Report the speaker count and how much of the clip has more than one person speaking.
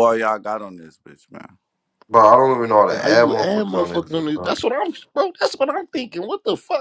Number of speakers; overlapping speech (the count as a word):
three, about 25%